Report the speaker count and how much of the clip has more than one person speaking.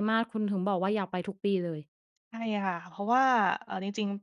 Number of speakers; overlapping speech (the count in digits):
2, no overlap